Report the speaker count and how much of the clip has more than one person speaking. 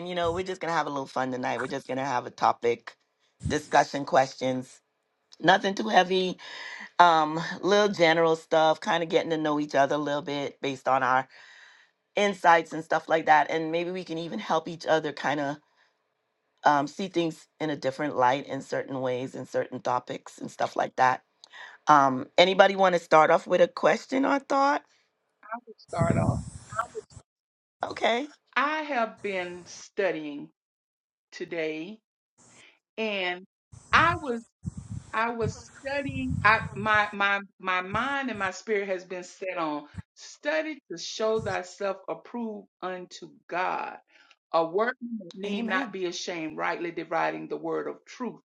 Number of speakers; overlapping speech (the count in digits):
2, about 1%